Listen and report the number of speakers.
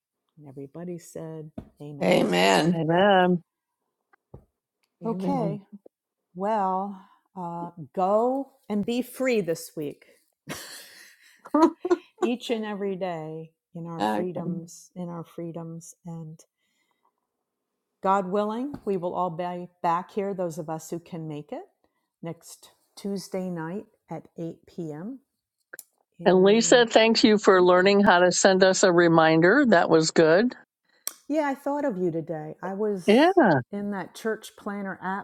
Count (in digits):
3